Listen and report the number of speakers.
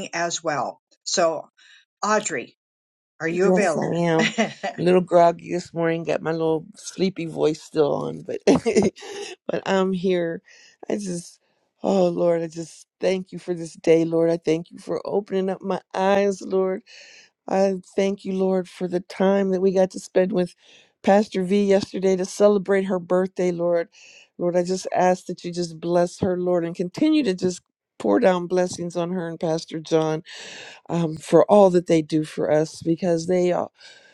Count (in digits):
2